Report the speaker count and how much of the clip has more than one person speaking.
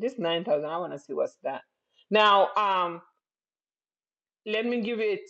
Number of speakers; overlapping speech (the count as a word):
one, no overlap